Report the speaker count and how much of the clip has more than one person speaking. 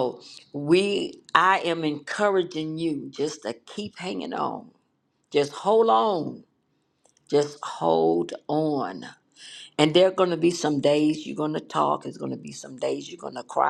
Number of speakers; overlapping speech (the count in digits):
1, no overlap